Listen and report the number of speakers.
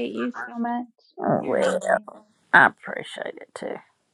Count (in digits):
2